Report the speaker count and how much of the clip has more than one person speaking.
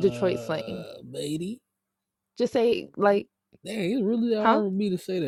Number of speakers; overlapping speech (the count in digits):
2, about 20%